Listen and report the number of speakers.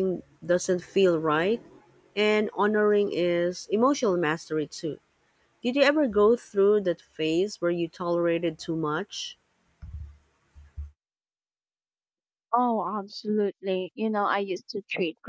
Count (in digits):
2